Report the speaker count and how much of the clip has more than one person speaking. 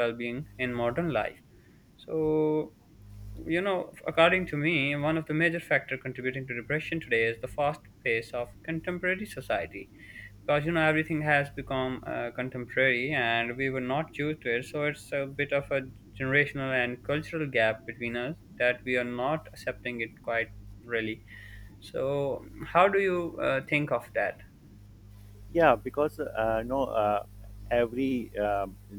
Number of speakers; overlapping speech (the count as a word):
two, no overlap